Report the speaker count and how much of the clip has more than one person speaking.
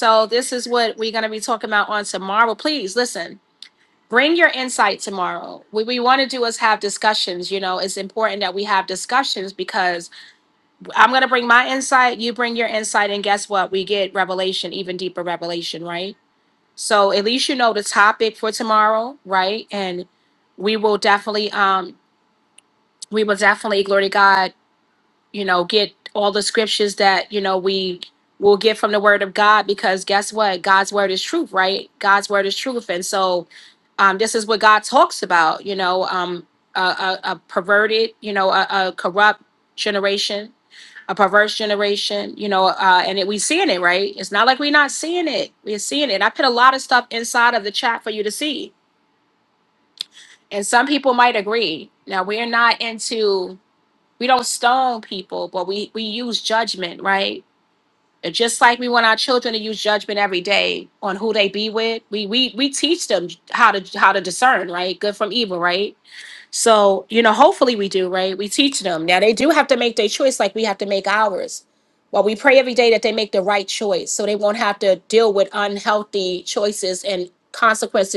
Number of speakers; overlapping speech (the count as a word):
one, no overlap